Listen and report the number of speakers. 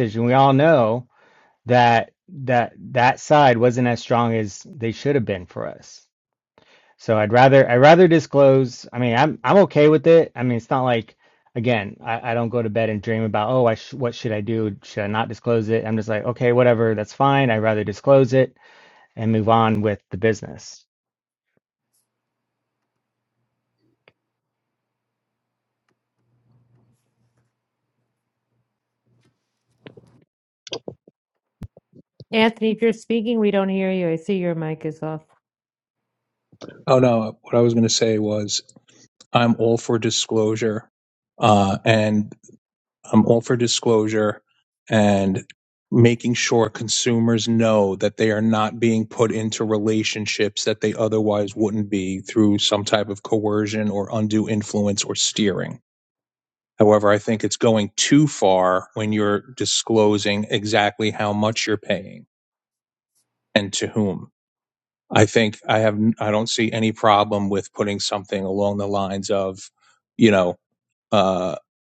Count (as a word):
three